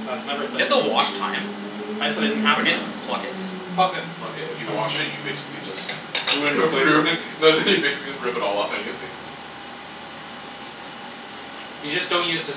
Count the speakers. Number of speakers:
4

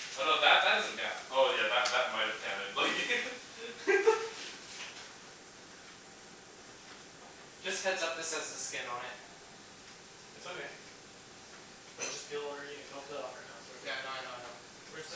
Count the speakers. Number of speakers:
3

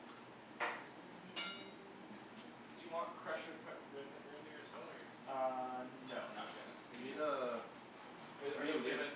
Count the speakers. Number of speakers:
3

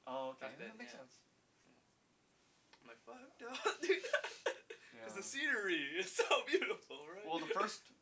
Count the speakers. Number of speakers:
2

